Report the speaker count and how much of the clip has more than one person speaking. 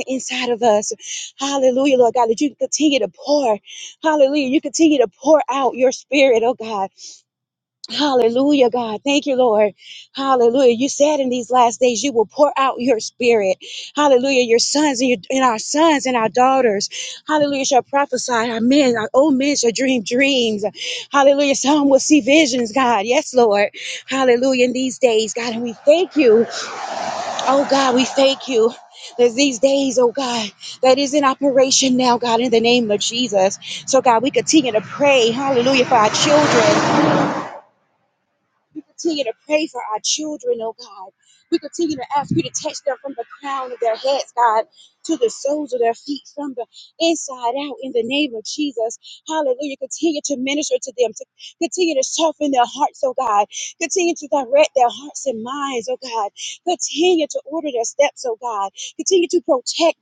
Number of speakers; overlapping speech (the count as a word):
one, no overlap